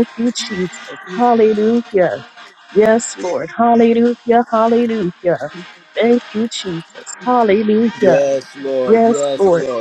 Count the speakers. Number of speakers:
two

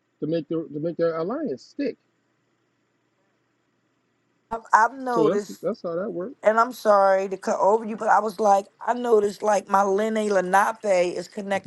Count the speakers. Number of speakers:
two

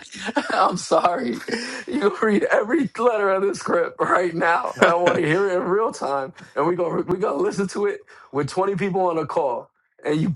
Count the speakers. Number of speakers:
one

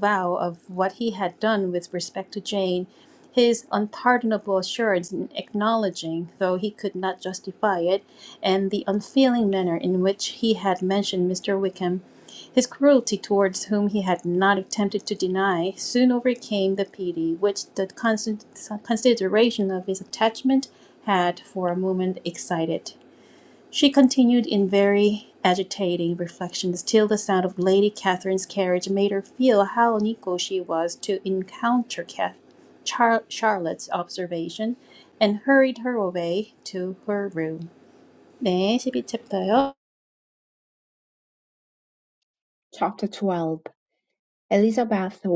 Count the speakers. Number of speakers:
two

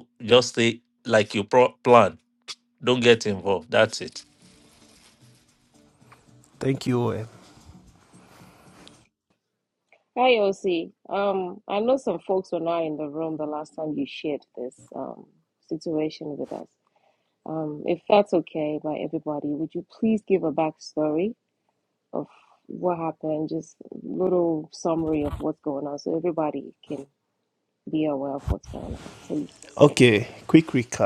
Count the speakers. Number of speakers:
three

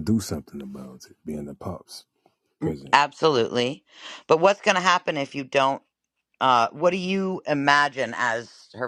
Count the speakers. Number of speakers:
two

